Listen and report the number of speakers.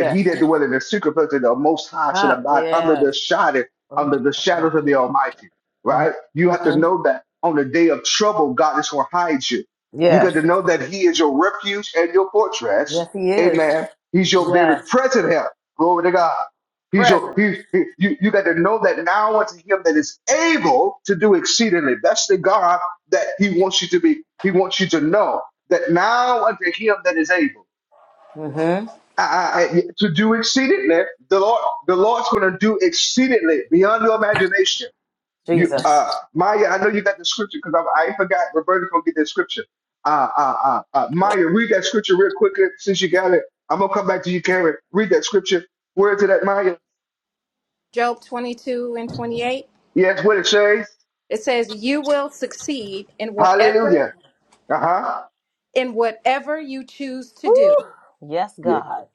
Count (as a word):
three